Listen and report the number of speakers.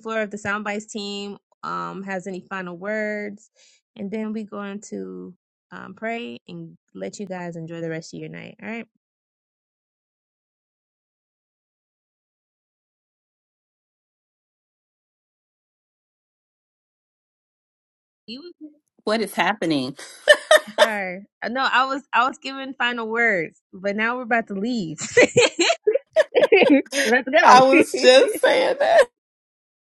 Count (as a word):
two